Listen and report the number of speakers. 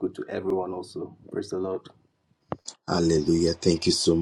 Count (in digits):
2